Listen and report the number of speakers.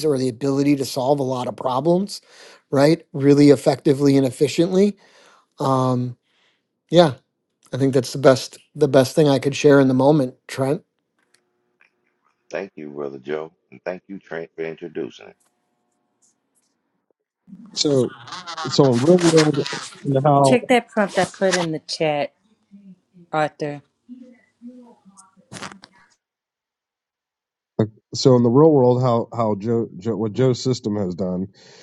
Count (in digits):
4